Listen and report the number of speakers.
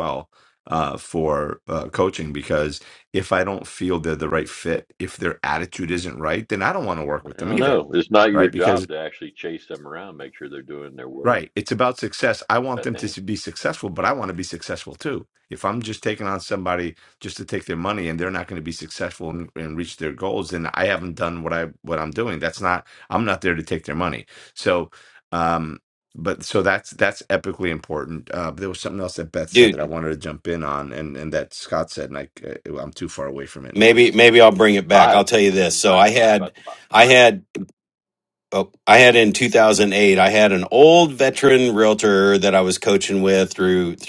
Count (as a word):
three